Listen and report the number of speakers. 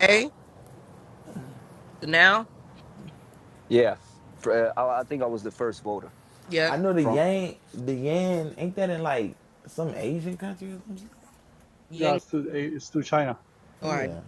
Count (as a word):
four